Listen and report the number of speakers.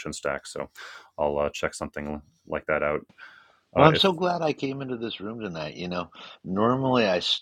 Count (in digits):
2